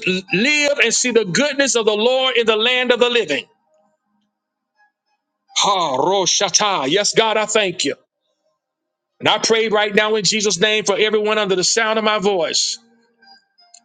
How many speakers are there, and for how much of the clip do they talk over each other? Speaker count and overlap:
1, no overlap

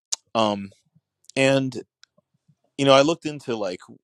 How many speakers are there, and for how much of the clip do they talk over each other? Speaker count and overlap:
1, no overlap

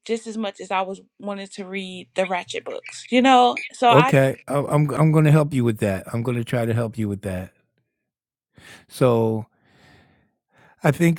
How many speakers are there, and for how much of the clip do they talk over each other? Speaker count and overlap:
2, about 3%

